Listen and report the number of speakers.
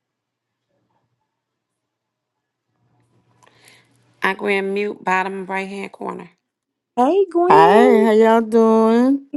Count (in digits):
3